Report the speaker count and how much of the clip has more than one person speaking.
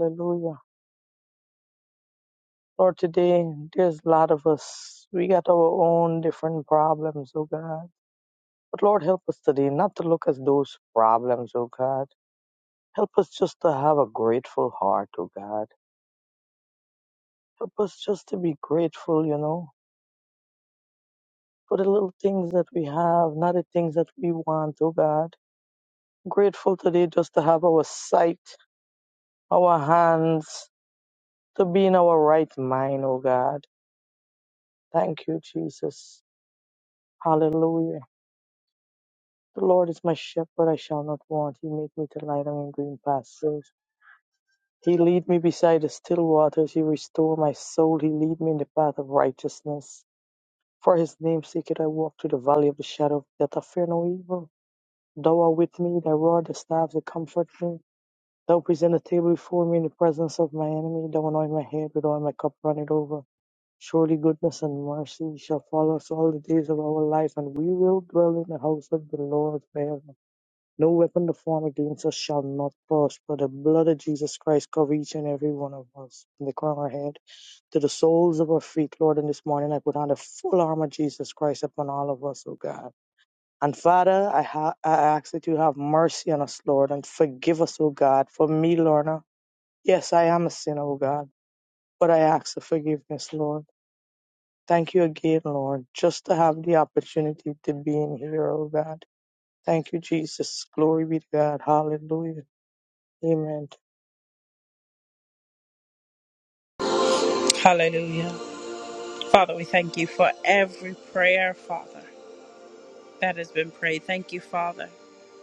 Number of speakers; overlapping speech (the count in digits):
2, no overlap